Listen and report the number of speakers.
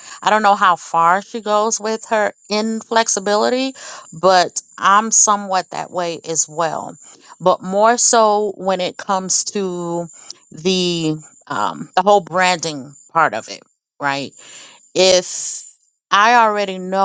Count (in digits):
1